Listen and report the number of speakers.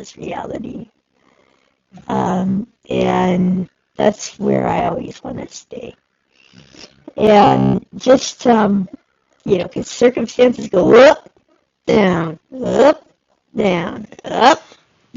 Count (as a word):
one